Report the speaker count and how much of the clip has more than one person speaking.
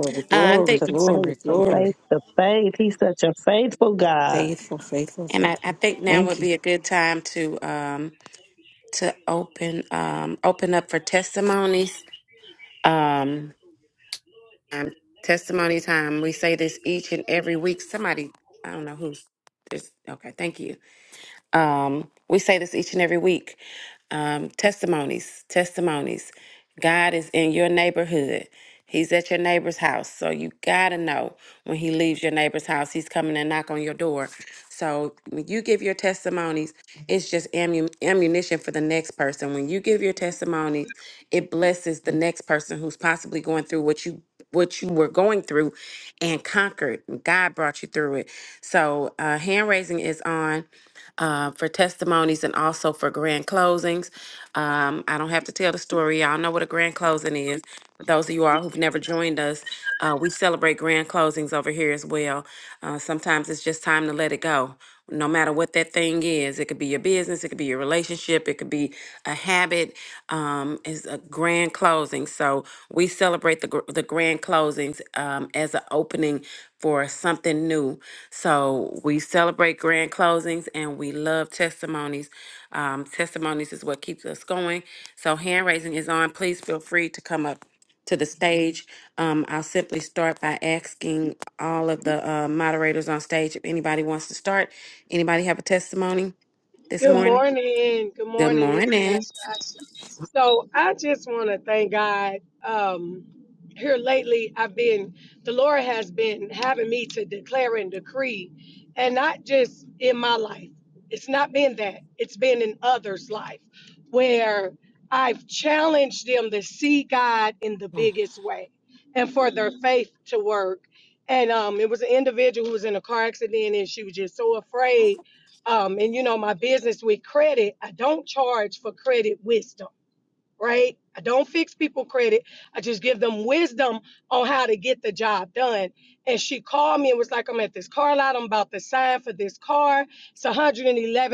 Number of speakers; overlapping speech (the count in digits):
4, about 3%